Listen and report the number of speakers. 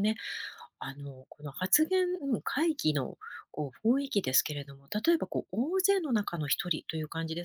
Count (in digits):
1